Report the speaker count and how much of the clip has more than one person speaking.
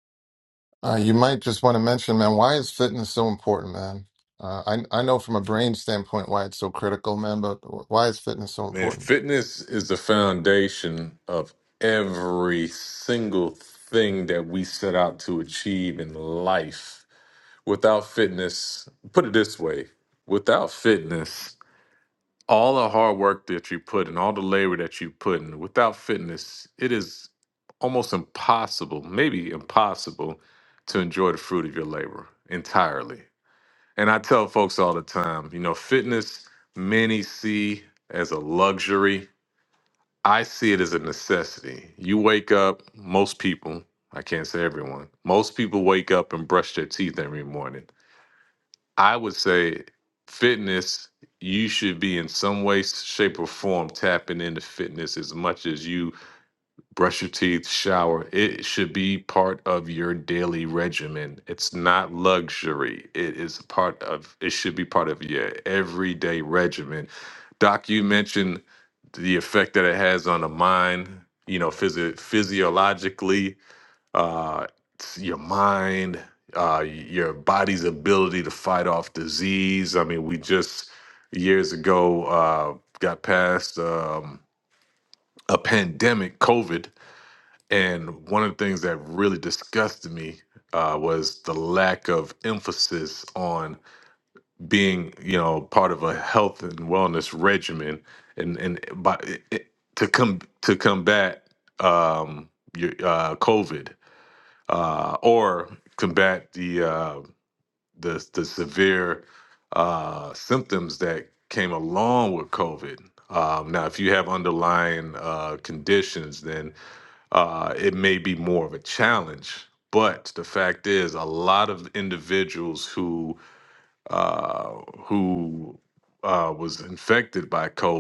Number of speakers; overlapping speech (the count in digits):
2, under 1%